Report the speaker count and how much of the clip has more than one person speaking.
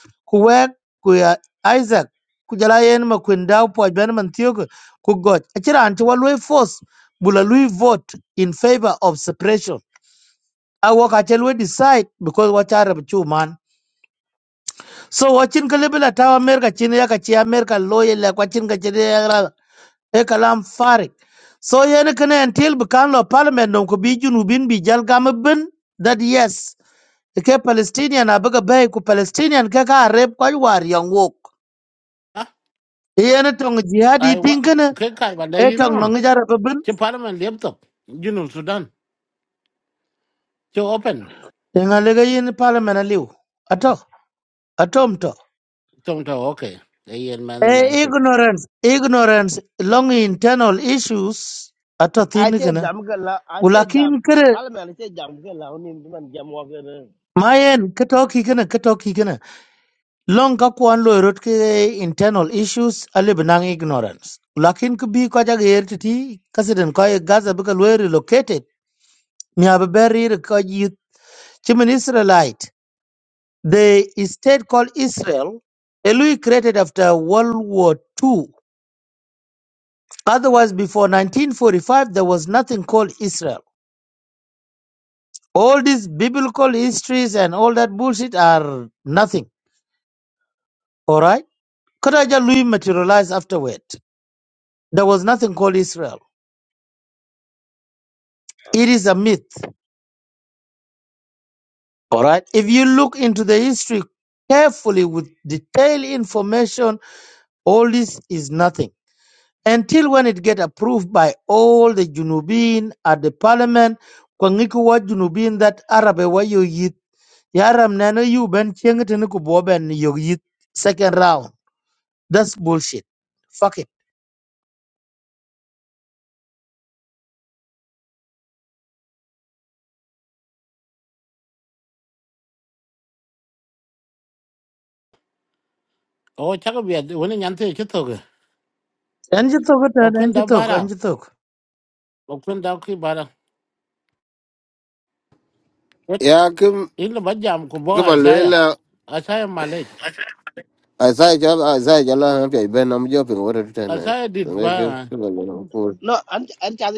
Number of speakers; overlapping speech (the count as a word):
four, about 3%